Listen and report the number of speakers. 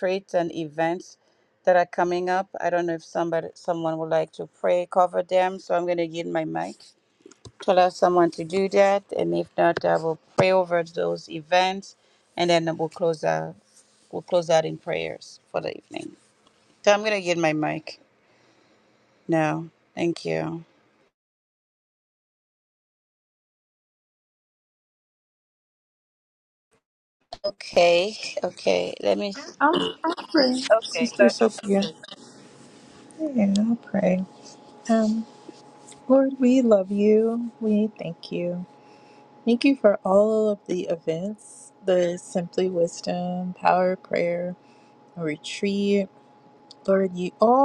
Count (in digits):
2